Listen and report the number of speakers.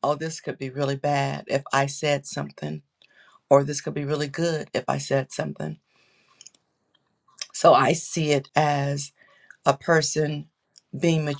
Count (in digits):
1